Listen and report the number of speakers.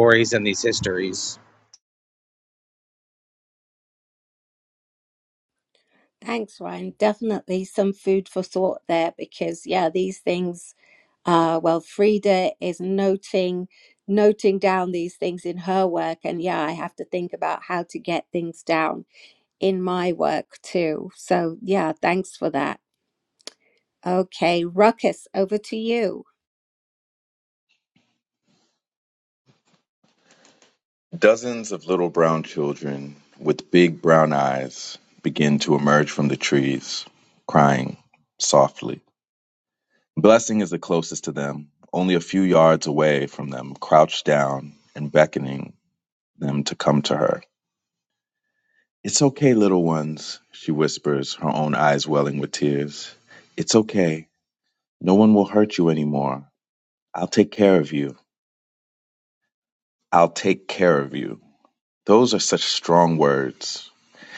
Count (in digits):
3